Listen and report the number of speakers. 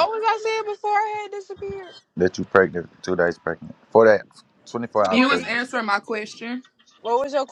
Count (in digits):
3